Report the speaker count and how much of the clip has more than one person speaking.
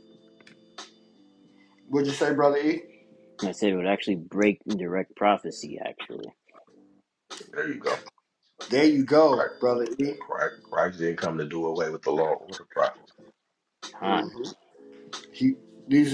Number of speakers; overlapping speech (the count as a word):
three, about 3%